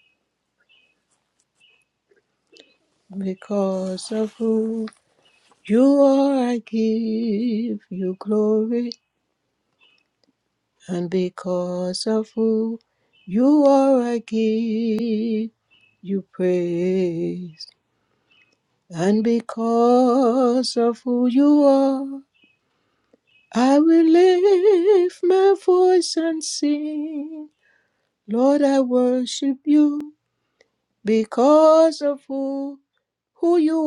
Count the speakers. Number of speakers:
1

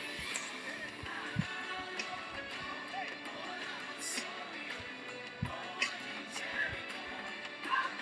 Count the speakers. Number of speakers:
0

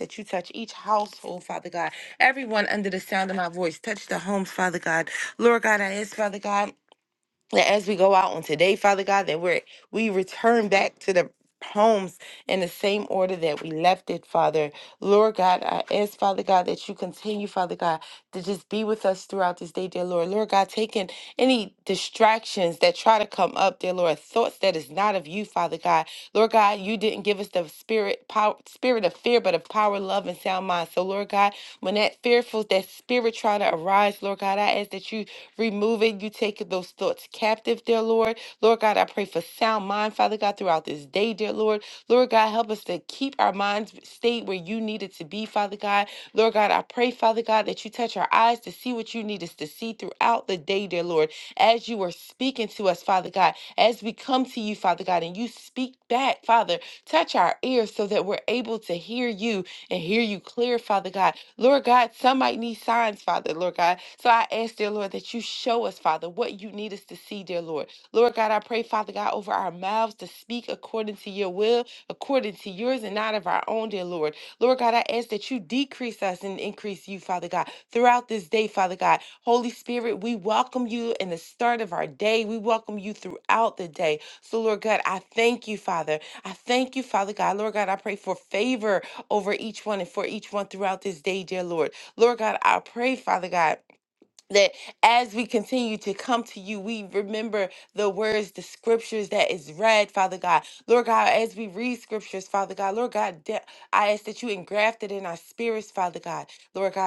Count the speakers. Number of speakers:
1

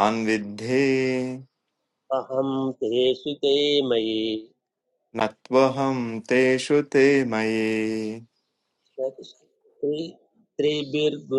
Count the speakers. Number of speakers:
2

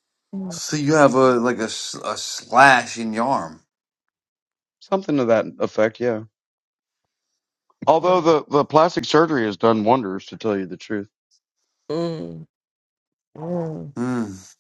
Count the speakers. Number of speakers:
3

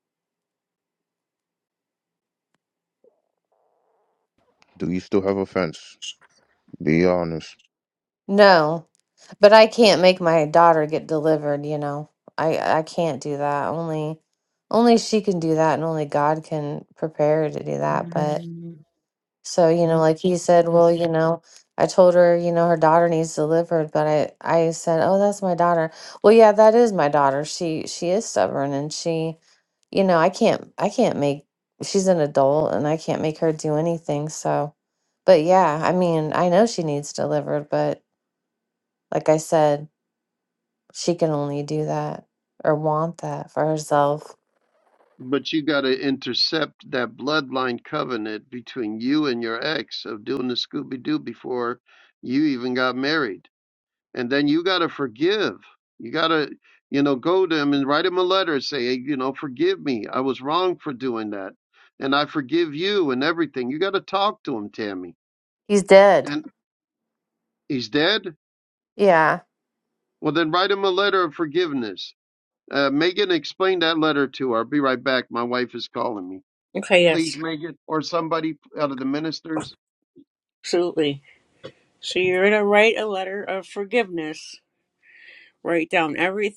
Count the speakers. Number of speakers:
4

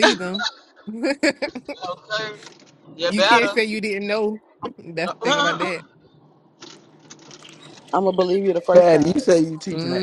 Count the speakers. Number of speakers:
4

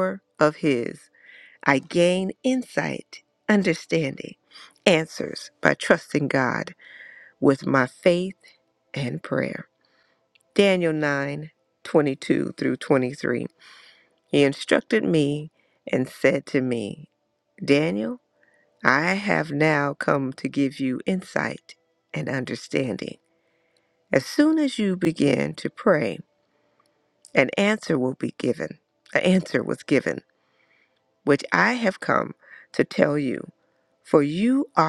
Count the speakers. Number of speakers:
1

